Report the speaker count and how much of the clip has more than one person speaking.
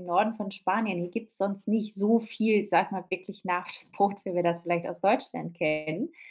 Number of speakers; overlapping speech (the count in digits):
1, no overlap